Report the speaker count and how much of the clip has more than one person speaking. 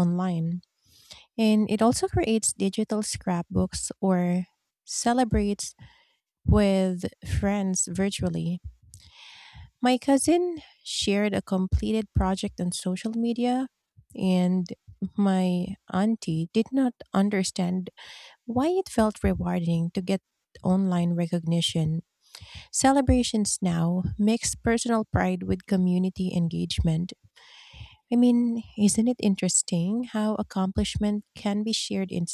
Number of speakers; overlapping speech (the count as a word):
one, no overlap